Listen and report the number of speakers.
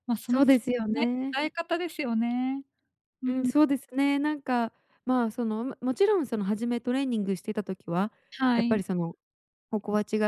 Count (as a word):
two